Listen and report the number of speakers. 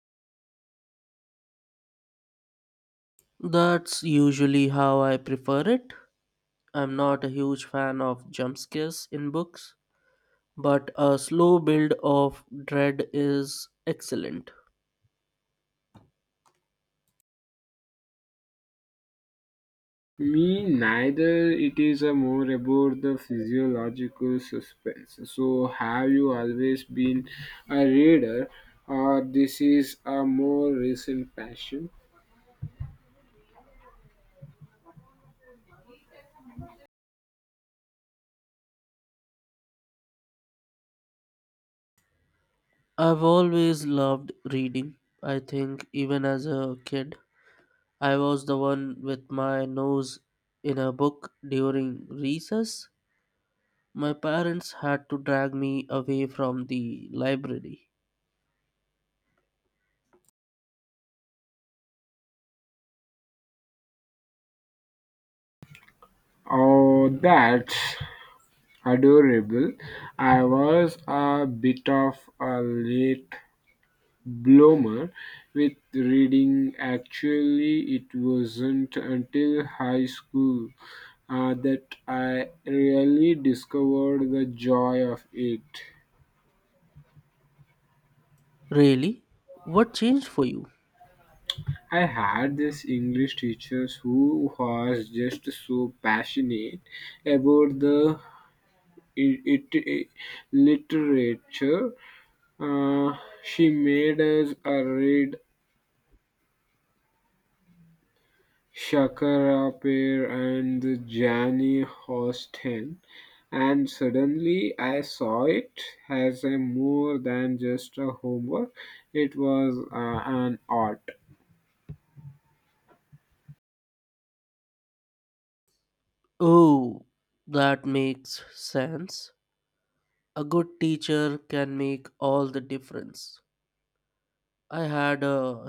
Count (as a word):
two